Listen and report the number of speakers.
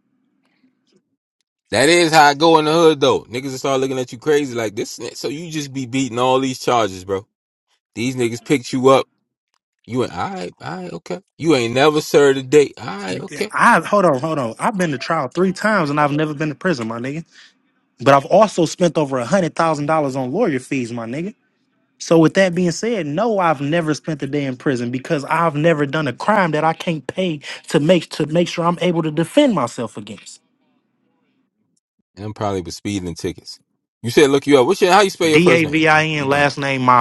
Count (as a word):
two